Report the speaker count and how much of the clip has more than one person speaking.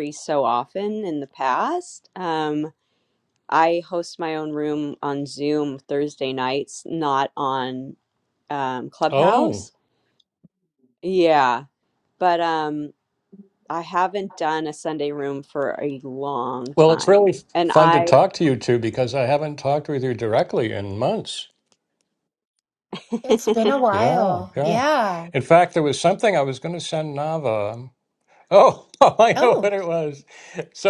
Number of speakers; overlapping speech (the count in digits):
3, about 9%